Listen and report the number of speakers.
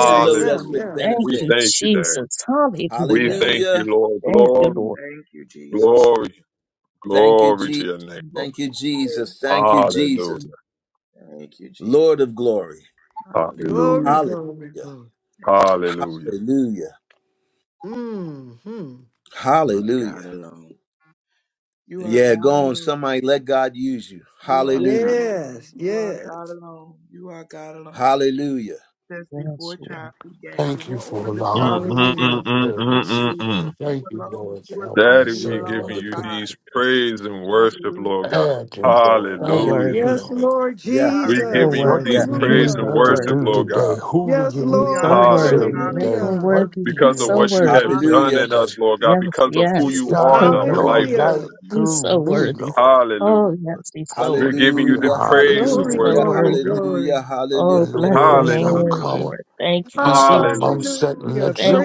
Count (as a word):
six